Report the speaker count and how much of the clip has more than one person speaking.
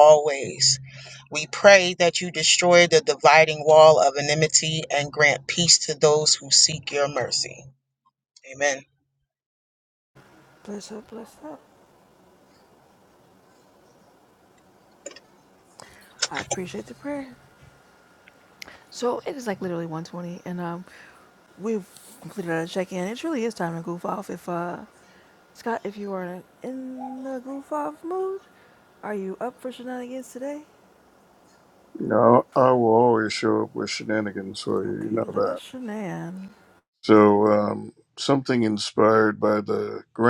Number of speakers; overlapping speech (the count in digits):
3, about 2%